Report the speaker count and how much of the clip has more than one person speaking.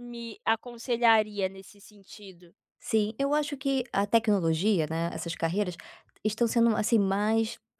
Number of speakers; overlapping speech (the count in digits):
2, no overlap